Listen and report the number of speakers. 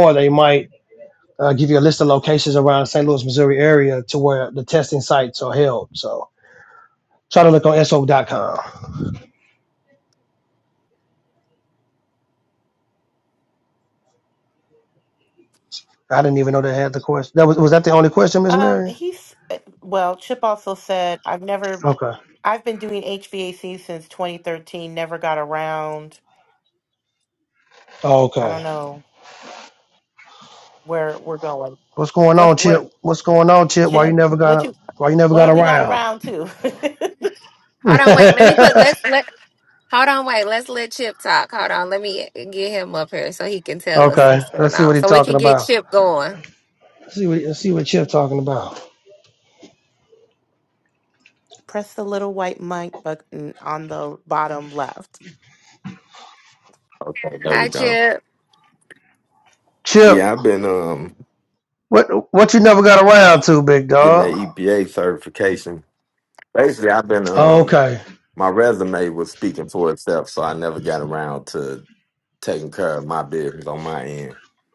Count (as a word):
four